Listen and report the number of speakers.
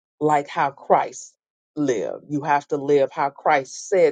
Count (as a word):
one